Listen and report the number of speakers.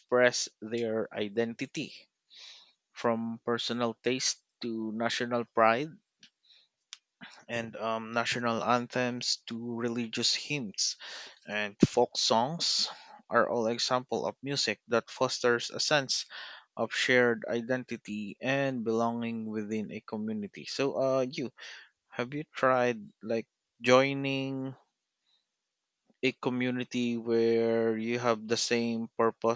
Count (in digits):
1